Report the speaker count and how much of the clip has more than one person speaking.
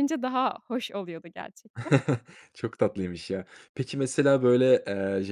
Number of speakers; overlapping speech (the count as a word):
two, no overlap